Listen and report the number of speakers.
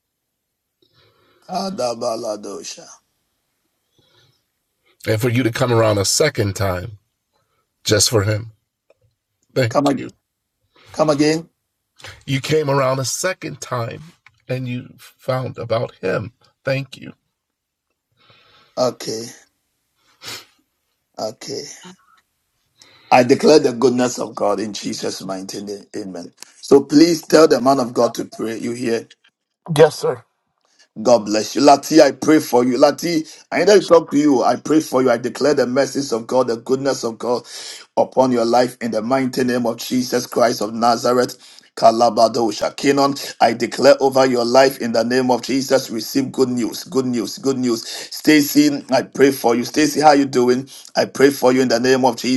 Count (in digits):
2